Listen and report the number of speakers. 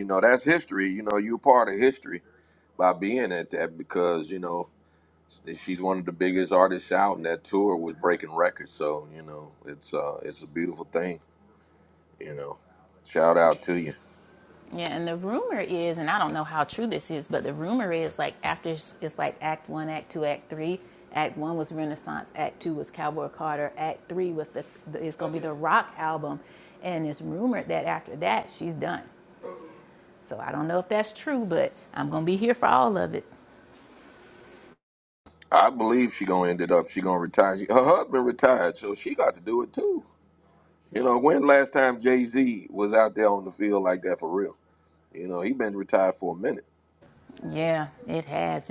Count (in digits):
2